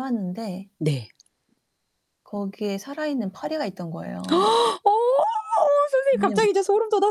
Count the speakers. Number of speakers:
2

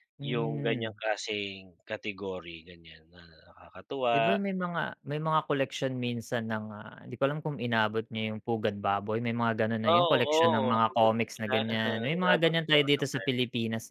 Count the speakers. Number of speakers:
2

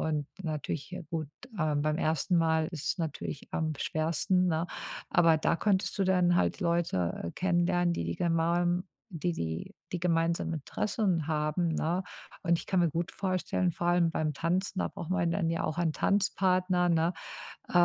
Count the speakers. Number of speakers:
1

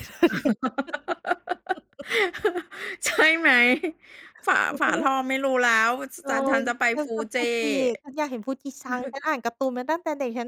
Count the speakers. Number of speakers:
2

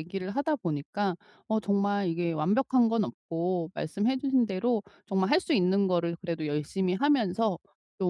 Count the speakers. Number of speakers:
1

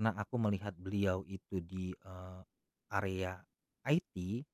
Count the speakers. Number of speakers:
1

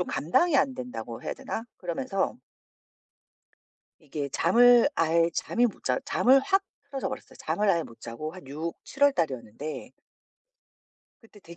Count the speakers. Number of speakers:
1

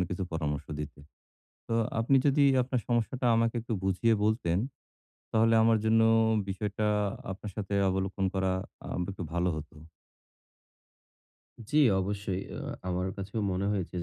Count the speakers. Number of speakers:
2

